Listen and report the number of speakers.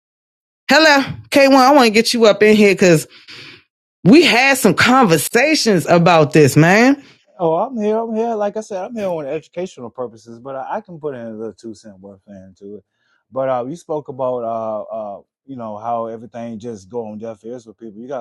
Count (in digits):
2